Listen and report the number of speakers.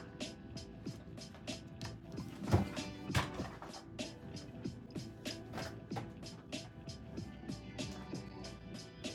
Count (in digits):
0